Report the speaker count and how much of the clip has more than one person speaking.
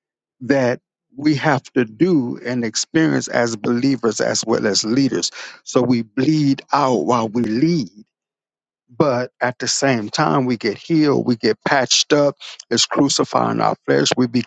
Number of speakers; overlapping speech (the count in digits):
1, no overlap